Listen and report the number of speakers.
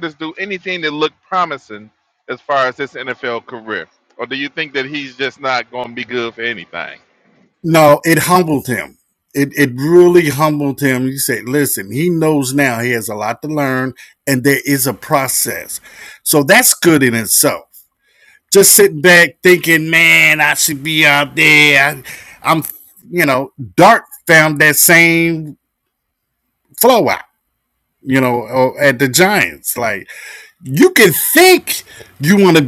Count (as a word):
two